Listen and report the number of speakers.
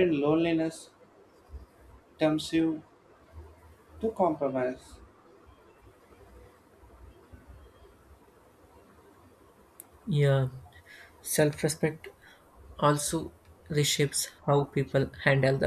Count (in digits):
2